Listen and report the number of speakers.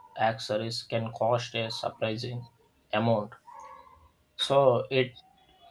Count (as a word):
one